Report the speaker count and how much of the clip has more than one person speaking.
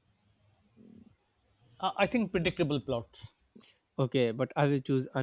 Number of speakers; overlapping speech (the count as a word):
two, no overlap